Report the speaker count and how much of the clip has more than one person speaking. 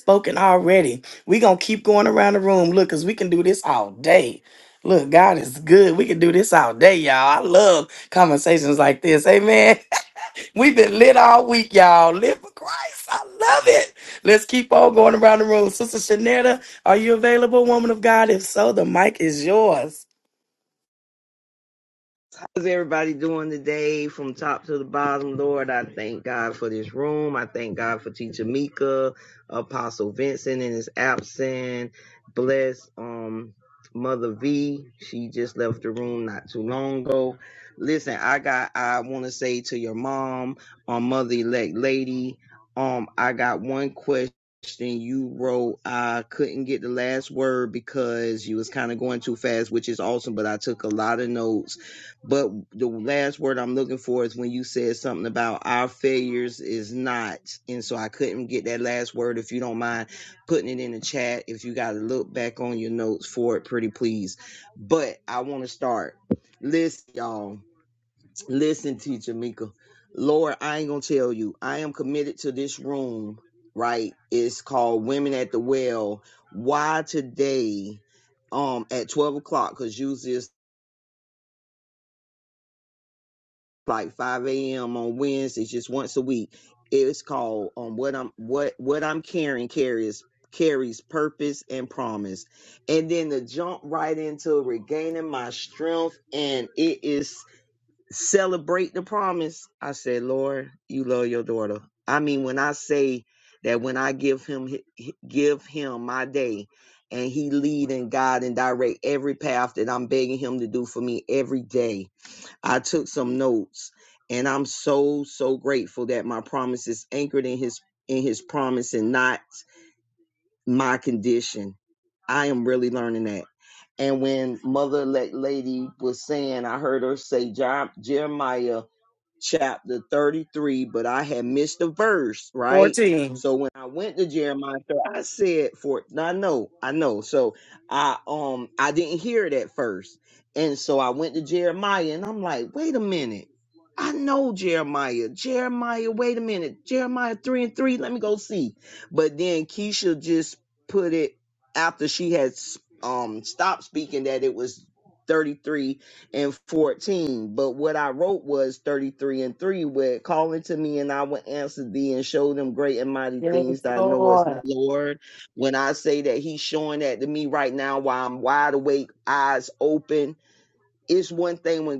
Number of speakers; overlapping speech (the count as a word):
two, about 1%